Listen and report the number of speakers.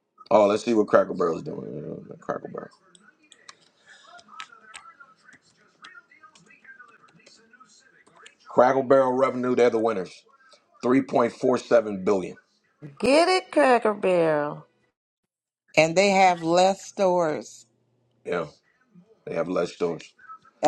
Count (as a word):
three